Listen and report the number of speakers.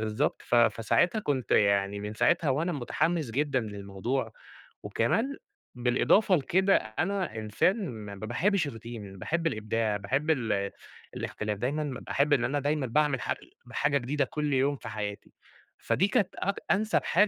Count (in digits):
1